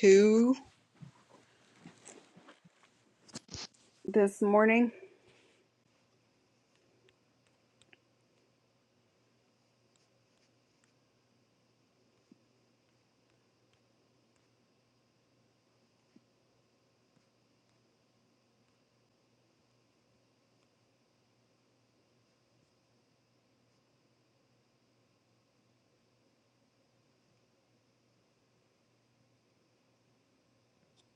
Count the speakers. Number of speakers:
1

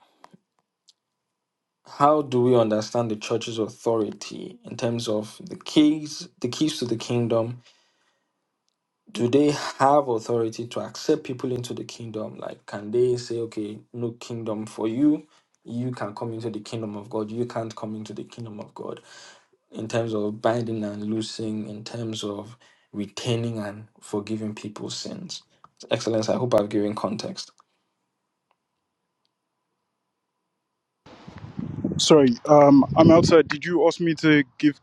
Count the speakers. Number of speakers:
2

